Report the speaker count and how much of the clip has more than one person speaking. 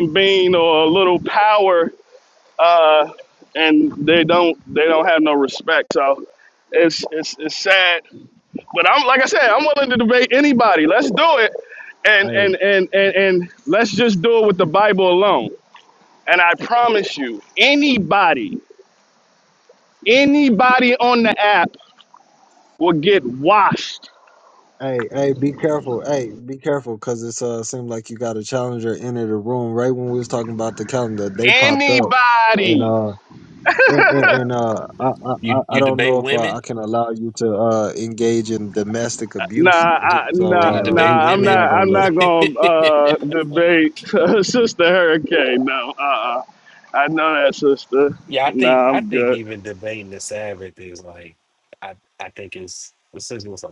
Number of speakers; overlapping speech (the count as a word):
three, about 10%